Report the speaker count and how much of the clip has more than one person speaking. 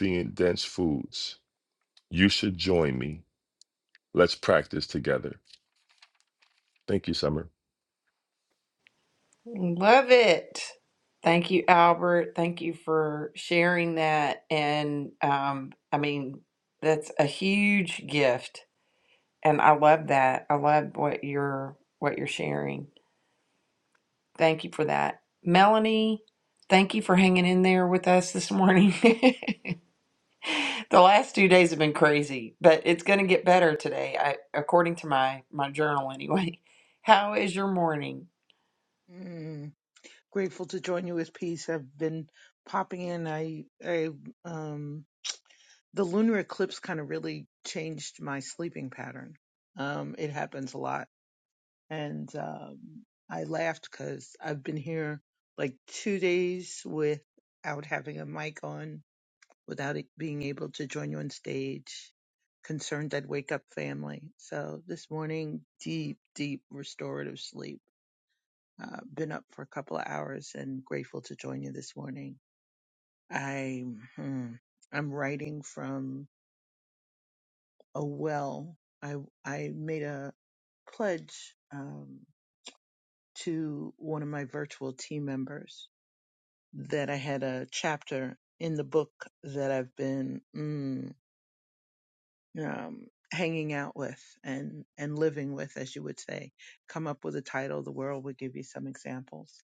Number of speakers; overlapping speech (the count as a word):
three, no overlap